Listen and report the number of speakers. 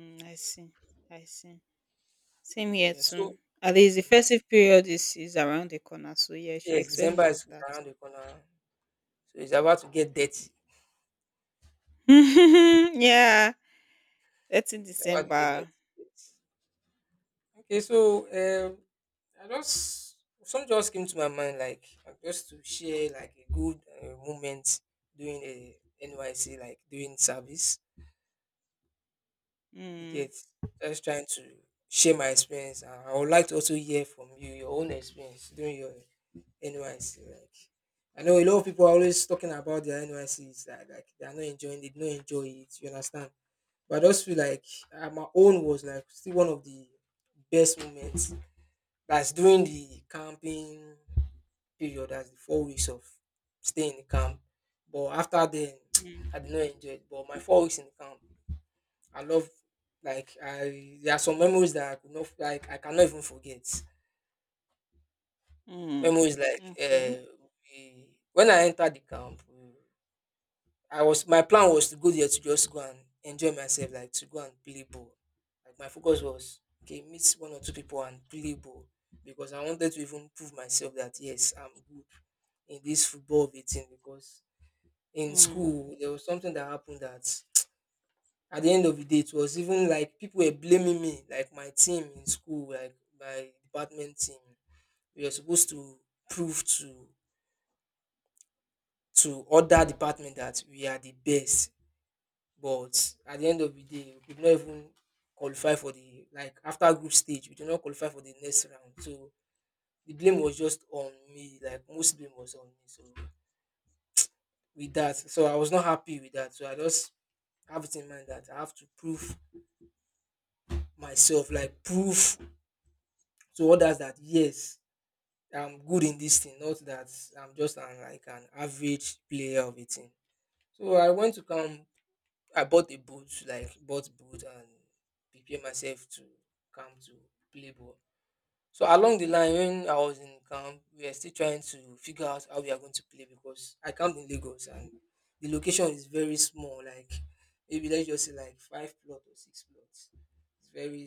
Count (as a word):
two